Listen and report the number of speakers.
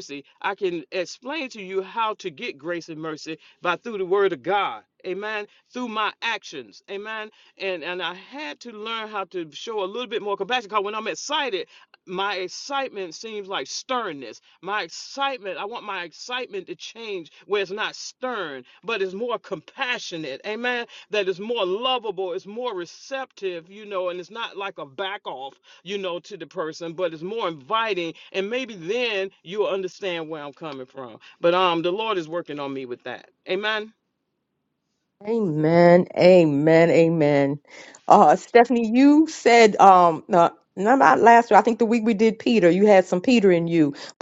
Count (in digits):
2